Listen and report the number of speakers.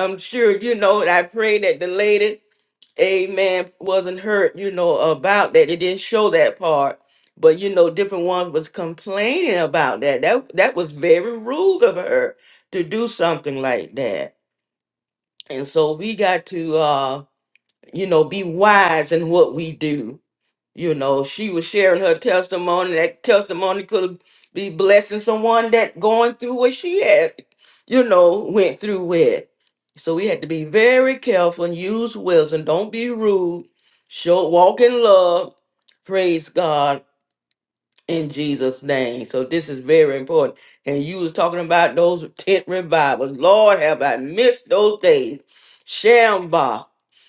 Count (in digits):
1